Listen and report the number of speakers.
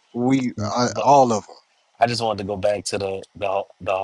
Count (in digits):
2